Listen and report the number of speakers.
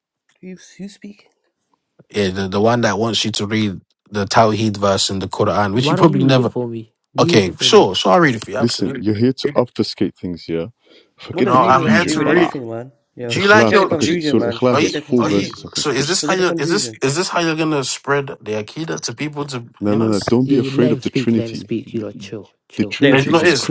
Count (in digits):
4